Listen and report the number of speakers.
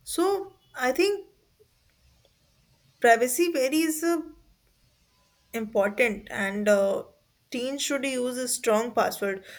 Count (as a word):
one